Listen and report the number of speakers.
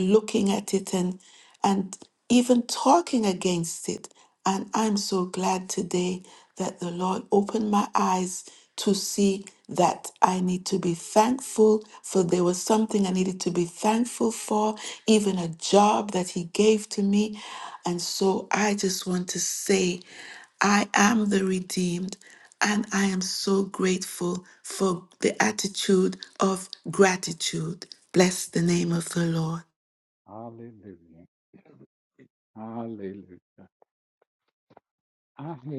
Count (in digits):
2